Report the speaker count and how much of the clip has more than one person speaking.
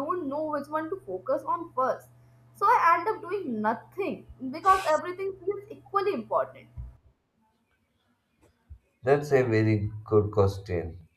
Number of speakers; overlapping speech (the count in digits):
2, no overlap